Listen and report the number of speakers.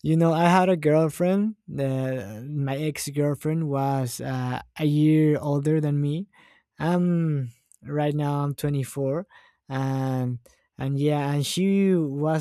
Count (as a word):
one